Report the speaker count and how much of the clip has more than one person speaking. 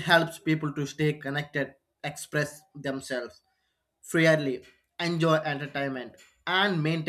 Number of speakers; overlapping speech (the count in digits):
1, no overlap